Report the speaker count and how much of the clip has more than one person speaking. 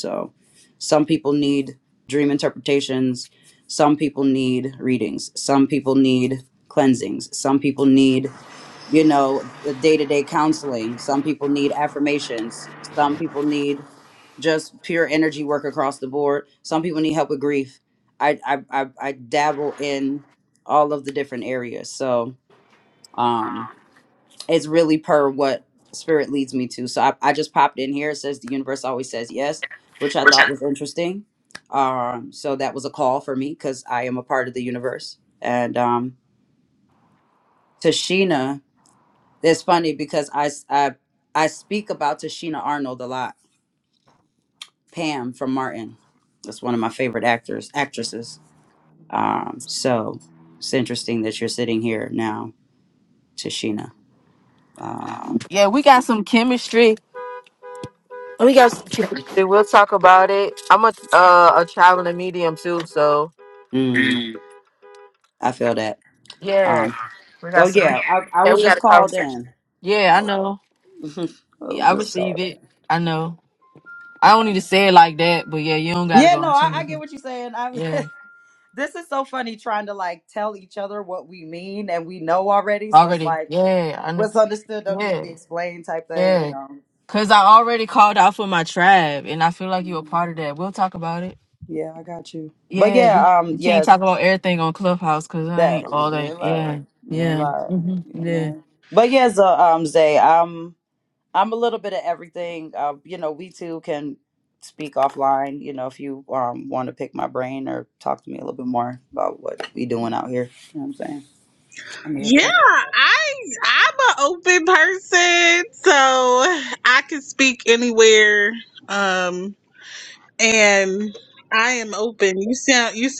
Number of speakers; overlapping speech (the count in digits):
3, about 8%